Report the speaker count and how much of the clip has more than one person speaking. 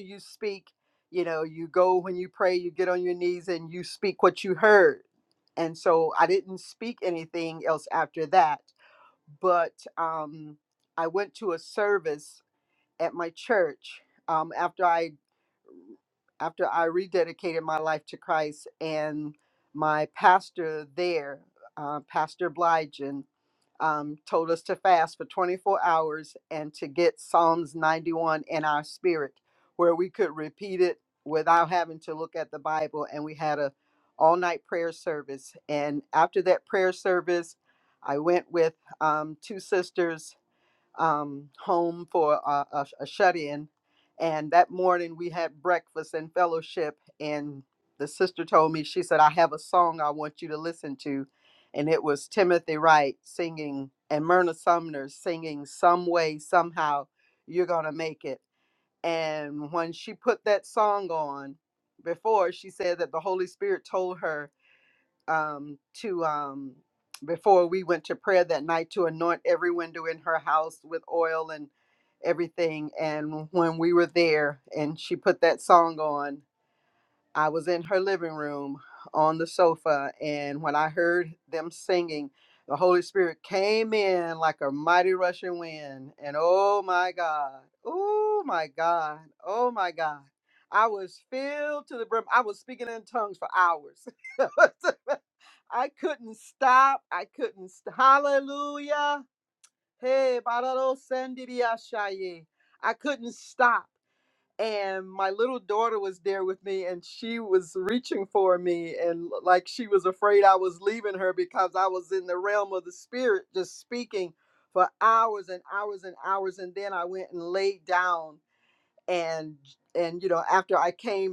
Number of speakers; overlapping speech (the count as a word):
one, no overlap